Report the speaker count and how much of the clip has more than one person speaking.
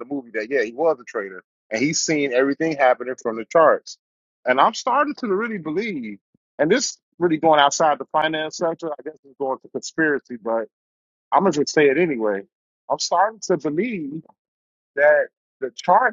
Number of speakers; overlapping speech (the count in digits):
1, no overlap